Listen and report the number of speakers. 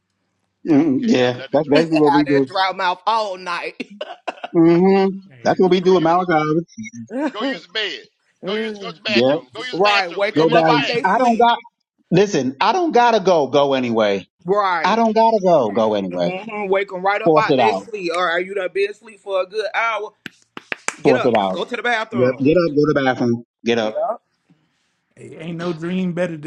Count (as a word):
four